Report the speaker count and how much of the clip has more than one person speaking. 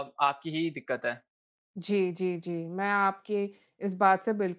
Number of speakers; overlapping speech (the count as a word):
two, no overlap